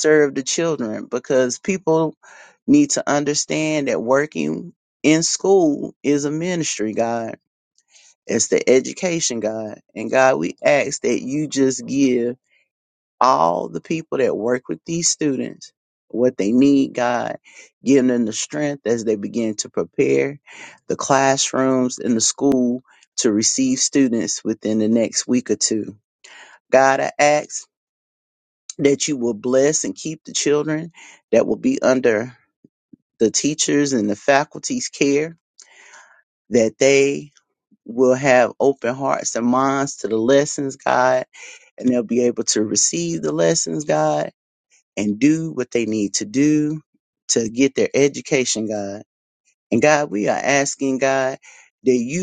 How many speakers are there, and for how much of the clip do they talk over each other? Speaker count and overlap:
1, no overlap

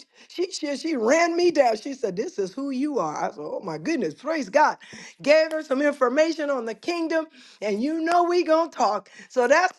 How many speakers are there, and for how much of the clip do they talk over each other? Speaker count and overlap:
1, no overlap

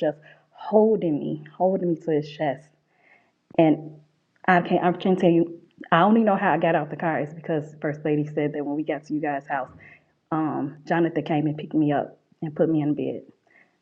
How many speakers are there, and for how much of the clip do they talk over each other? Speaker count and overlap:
1, no overlap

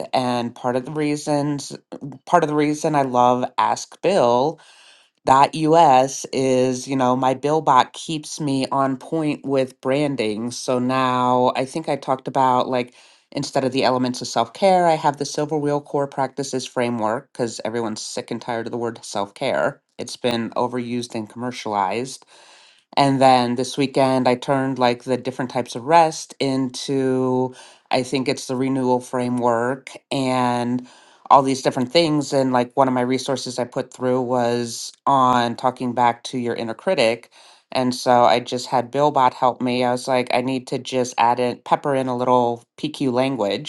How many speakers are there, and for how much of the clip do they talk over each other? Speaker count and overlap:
1, no overlap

